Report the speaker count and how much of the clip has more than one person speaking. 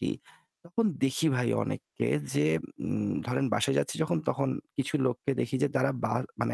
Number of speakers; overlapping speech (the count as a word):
one, no overlap